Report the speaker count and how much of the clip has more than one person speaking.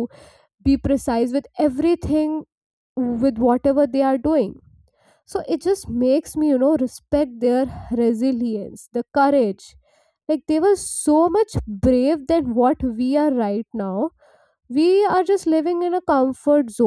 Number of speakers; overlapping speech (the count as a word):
one, no overlap